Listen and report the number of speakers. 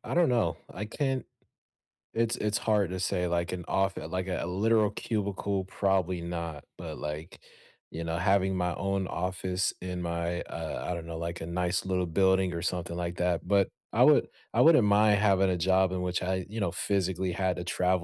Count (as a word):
one